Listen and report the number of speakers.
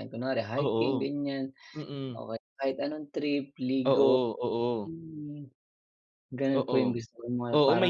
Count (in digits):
2